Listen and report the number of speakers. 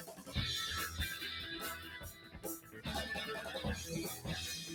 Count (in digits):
0